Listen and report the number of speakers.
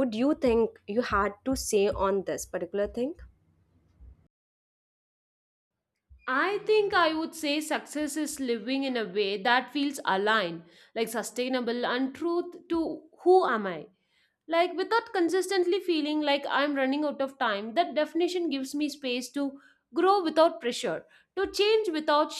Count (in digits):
2